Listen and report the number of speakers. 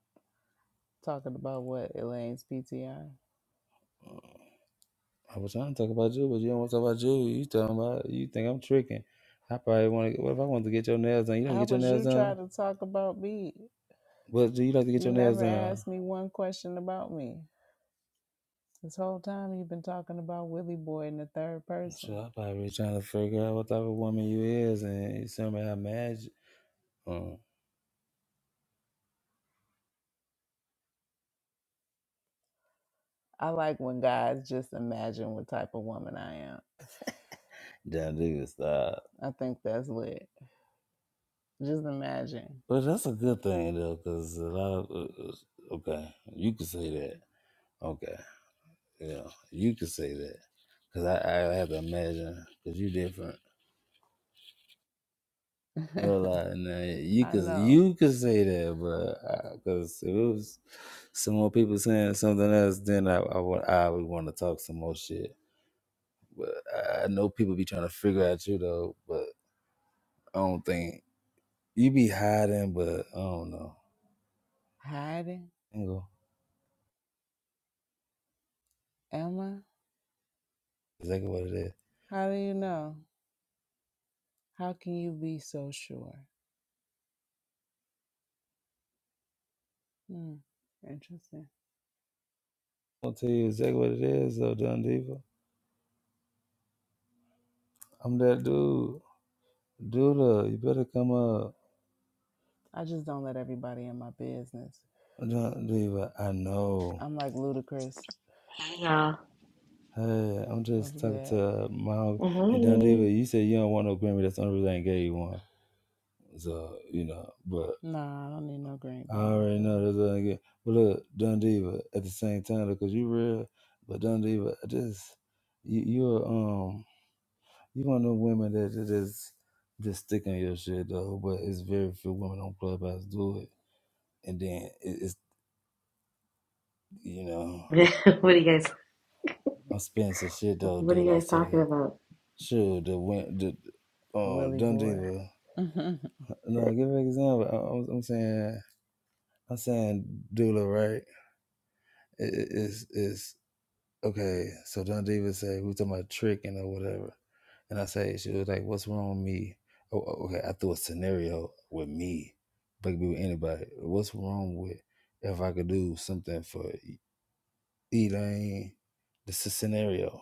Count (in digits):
3